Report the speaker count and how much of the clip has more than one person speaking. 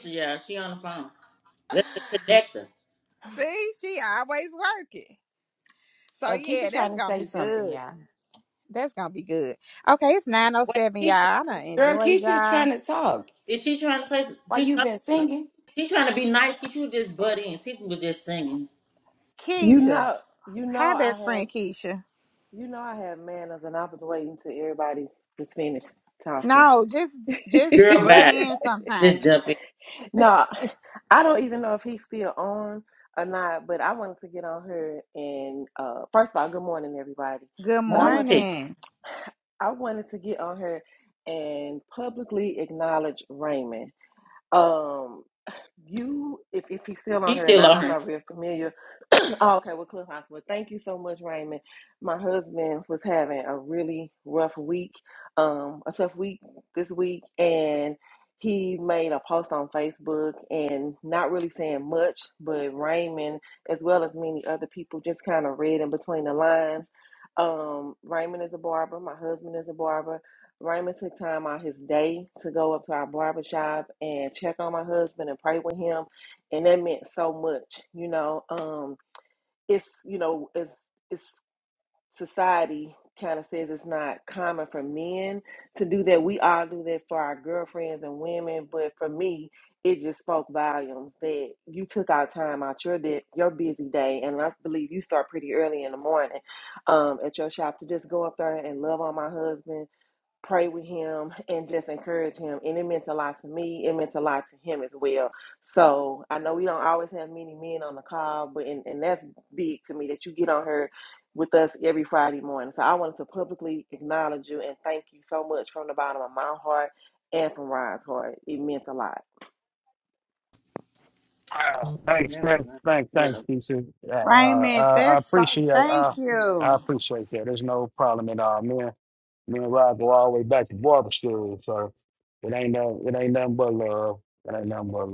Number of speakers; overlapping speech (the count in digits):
5, about 7%